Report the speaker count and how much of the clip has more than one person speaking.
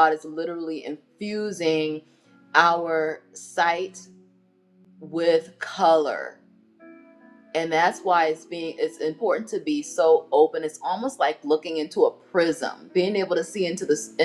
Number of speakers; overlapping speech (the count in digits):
1, no overlap